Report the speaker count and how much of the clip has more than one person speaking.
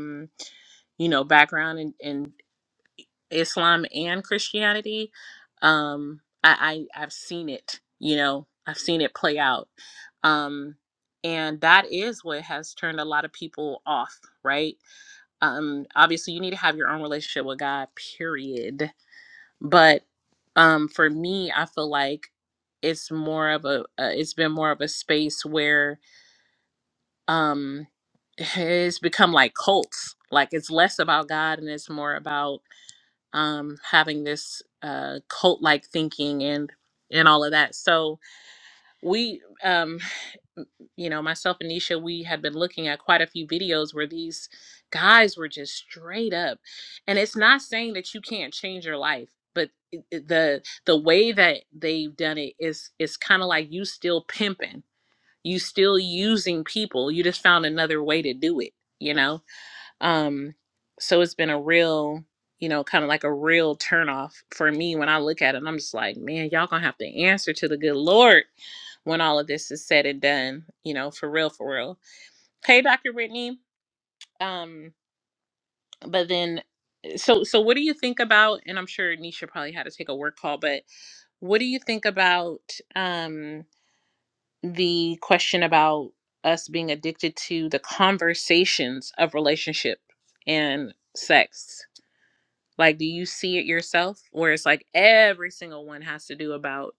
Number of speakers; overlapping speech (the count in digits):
1, no overlap